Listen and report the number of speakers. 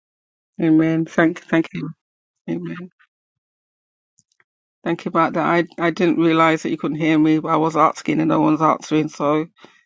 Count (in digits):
1